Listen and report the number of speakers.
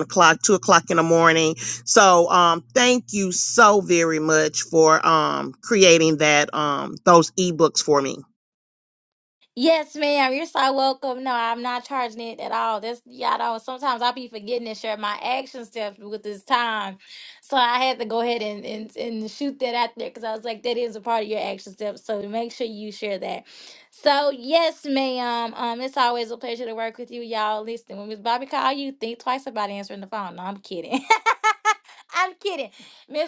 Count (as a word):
two